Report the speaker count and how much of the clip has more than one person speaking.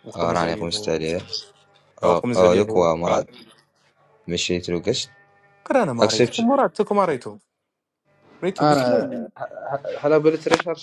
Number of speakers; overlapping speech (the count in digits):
3, about 22%